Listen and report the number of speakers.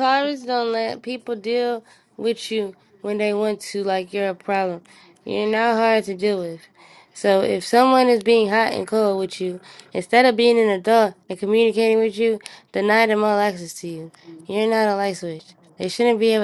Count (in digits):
1